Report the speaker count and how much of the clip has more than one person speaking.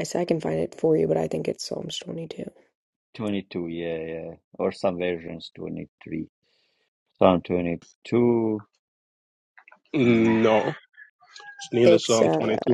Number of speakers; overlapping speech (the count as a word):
three, about 8%